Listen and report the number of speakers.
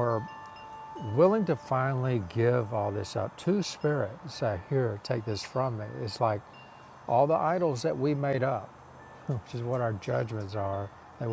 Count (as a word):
one